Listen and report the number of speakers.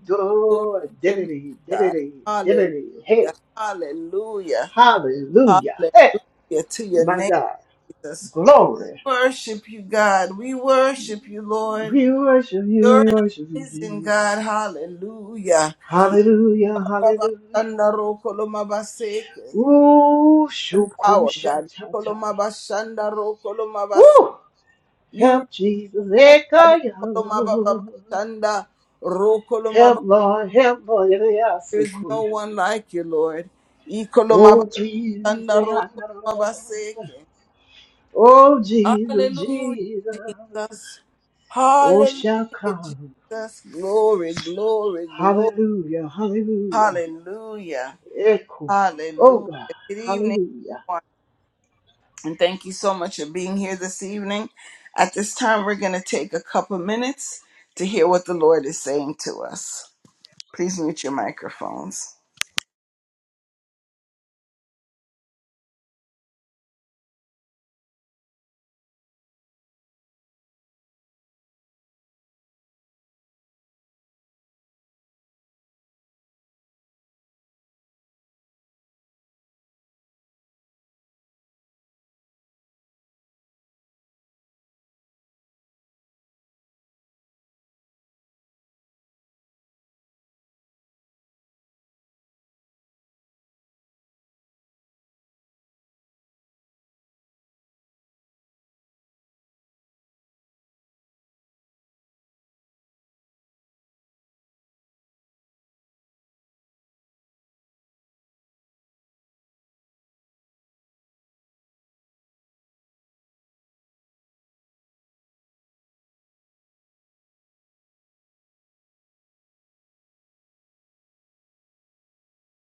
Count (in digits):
2